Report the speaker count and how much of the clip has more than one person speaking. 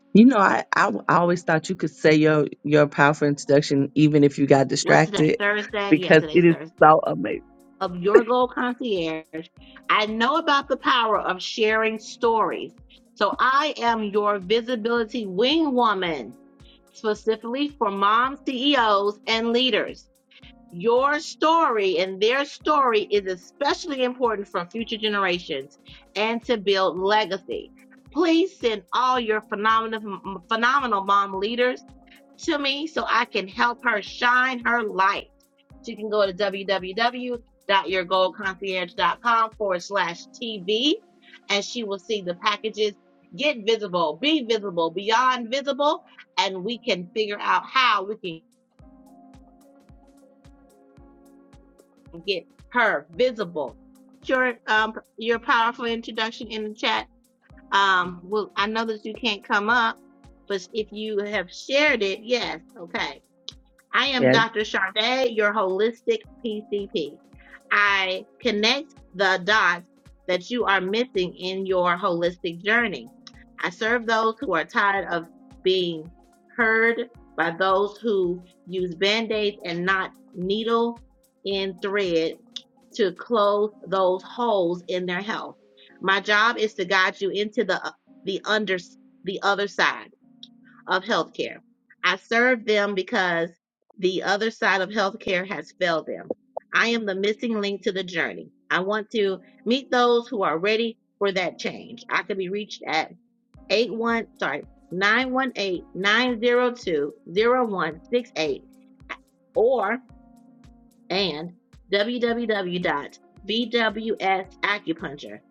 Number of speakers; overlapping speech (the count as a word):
two, about 1%